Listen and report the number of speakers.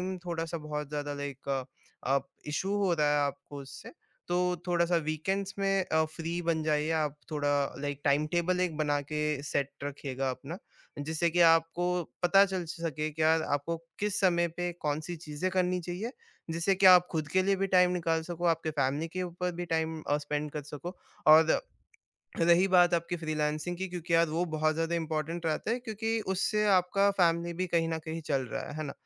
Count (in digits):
1